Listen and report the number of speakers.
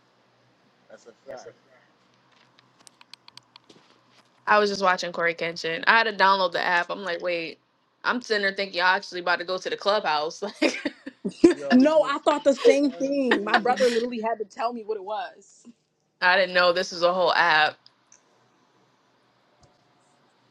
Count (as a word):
three